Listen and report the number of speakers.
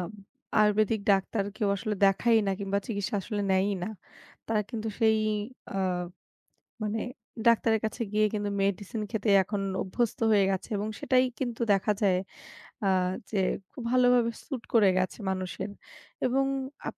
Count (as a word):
one